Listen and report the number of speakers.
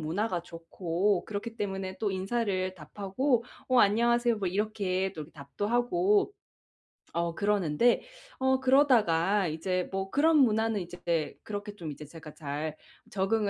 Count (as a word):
one